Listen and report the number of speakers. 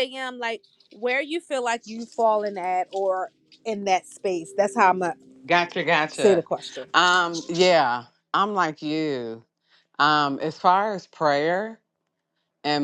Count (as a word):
two